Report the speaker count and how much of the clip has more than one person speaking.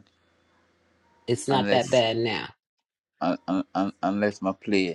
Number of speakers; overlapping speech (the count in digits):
2, about 9%